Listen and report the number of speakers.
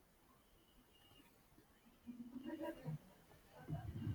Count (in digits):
0